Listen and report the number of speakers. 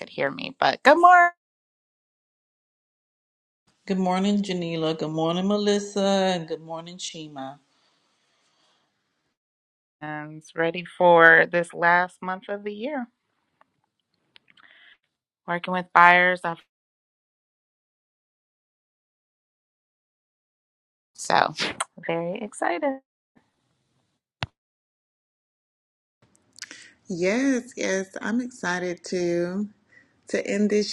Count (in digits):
3